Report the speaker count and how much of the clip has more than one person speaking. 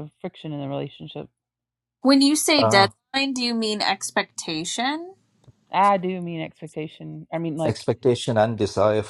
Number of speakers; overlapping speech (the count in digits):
3, about 5%